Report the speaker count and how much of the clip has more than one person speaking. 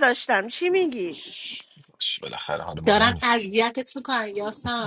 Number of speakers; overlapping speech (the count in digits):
3, about 12%